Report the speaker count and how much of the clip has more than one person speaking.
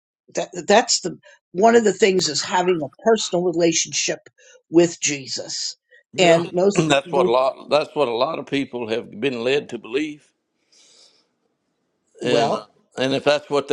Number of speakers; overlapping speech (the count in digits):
2, about 9%